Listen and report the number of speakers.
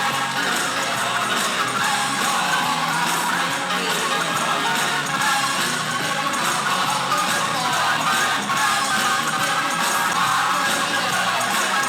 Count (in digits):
0